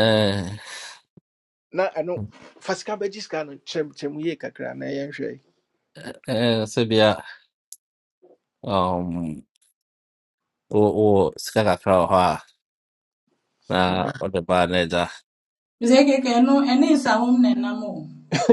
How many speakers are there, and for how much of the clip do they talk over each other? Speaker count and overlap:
3, no overlap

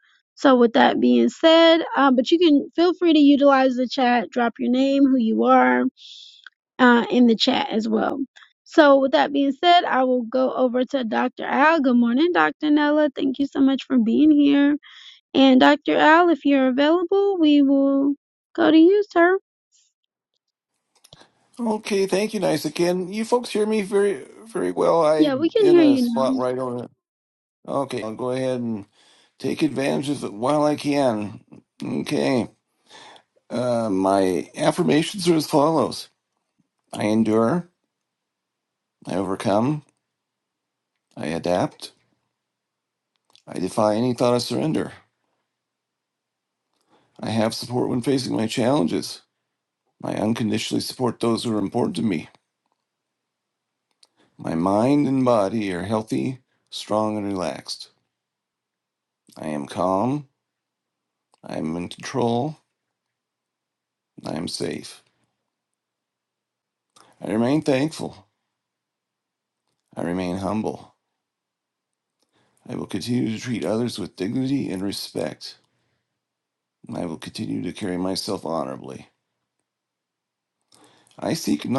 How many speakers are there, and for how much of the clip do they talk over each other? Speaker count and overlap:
2, about 1%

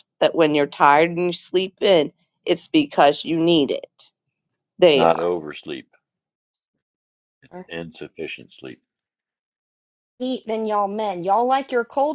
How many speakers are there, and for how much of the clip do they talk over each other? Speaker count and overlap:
3, about 3%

